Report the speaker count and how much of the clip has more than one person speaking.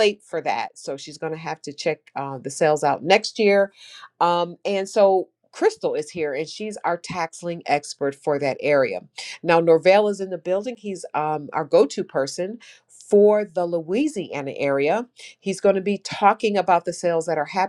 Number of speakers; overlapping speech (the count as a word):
one, no overlap